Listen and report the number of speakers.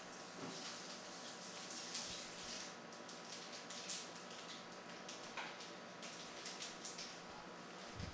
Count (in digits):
0